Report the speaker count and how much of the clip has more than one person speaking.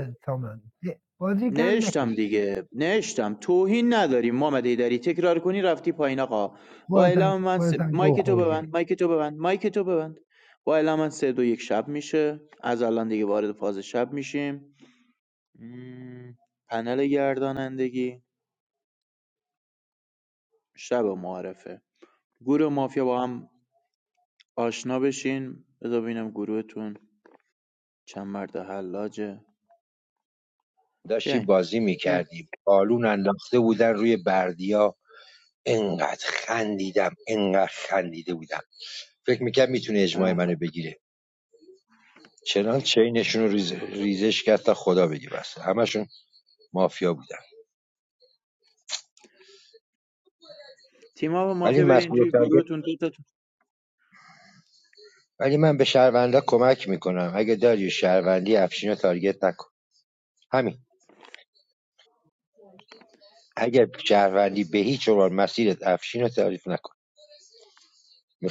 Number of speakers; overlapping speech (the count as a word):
three, about 6%